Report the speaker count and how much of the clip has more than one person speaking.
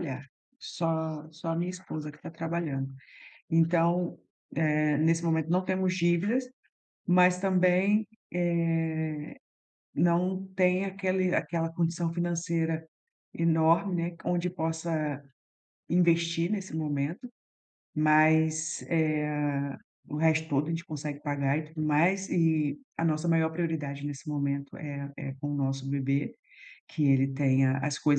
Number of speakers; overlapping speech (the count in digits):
1, no overlap